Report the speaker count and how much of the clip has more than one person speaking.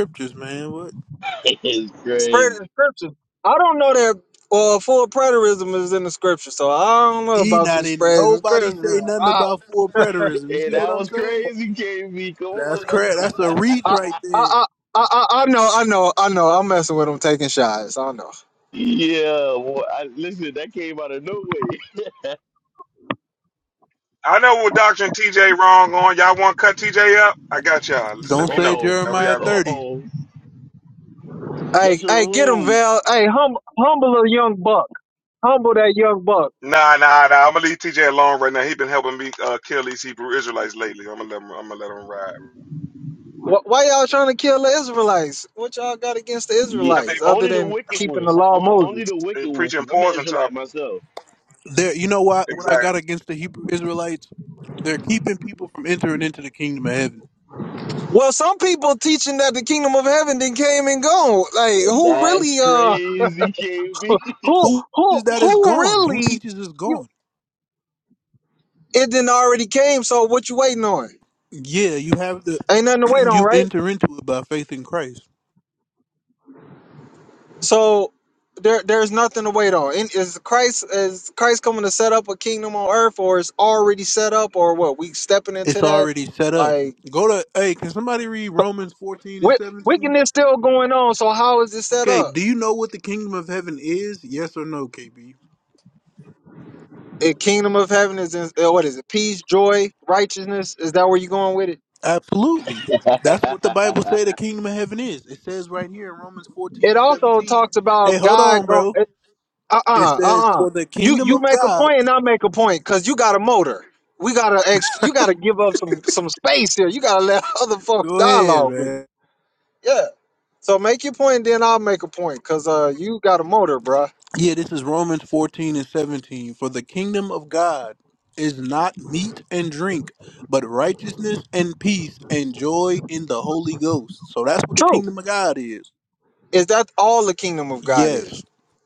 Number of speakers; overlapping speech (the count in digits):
4, about 15%